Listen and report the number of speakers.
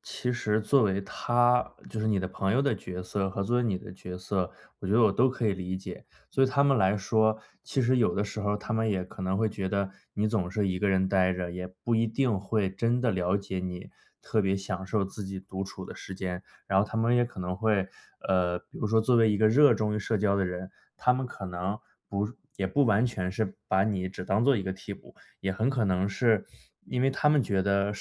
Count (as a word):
one